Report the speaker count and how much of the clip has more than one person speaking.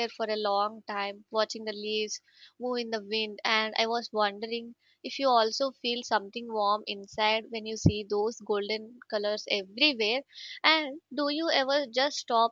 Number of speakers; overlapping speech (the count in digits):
1, no overlap